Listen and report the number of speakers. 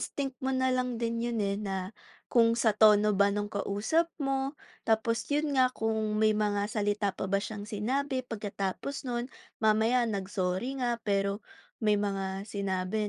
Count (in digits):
1